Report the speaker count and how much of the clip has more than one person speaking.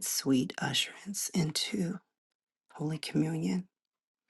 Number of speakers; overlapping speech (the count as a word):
one, no overlap